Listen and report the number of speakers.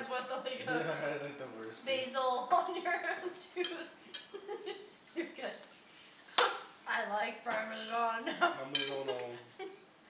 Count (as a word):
two